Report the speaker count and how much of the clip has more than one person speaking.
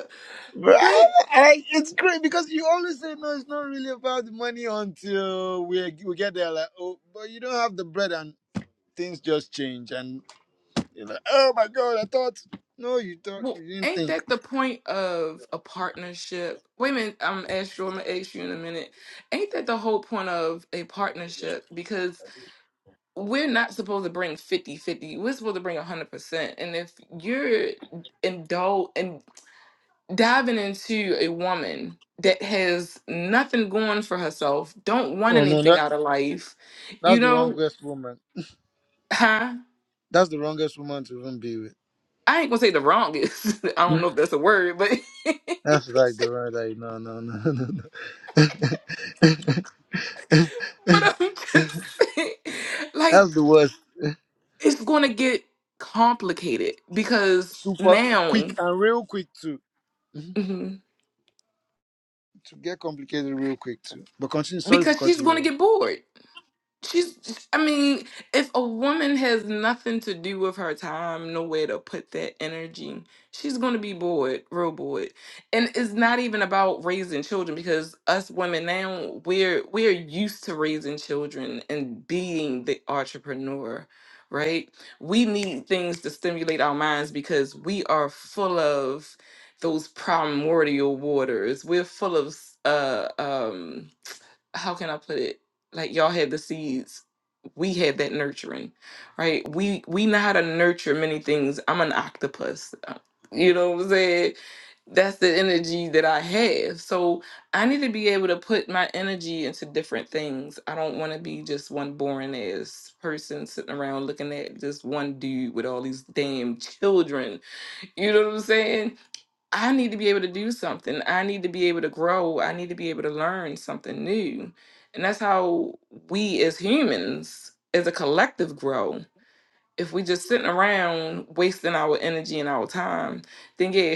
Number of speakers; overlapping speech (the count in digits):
2, about 3%